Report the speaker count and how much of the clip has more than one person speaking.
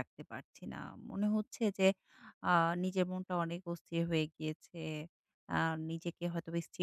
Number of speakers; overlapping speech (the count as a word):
one, no overlap